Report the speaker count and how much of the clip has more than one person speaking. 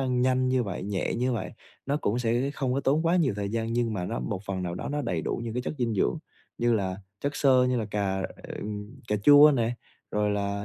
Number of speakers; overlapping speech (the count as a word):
one, no overlap